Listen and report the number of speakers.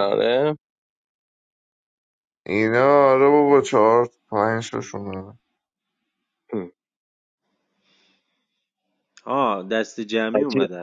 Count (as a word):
three